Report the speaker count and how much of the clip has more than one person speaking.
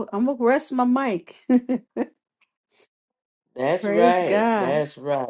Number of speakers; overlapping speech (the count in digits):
2, about 18%